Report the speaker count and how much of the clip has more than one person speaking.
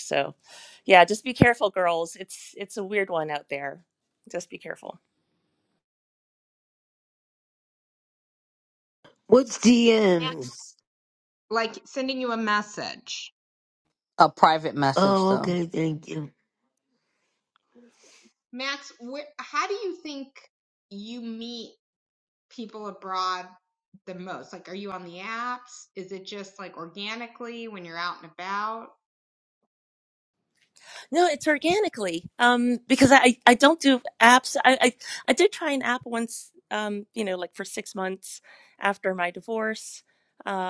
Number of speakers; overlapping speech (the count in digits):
4, about 2%